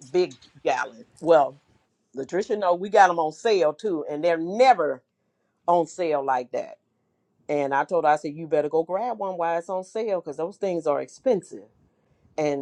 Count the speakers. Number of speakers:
one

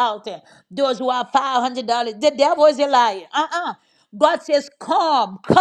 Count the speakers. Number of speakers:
one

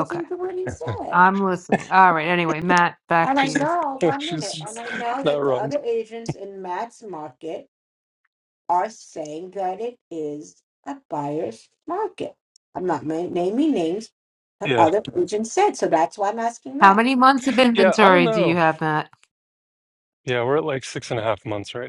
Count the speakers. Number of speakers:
three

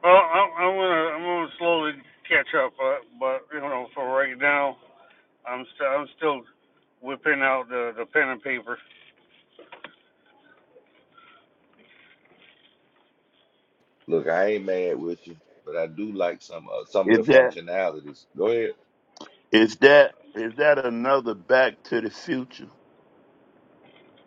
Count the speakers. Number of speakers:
three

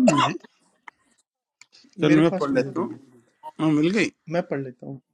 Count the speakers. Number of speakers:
two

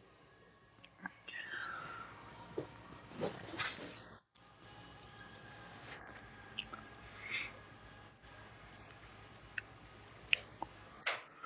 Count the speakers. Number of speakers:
zero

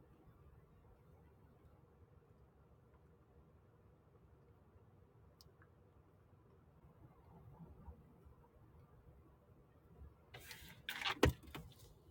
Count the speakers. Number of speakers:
zero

